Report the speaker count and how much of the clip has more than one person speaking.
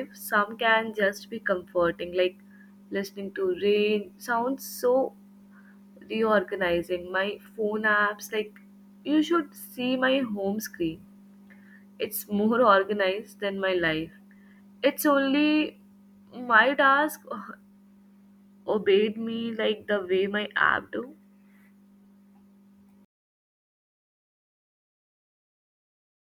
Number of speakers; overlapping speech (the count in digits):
1, no overlap